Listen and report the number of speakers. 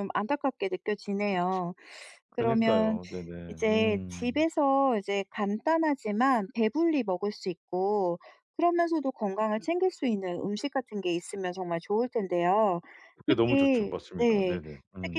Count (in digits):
2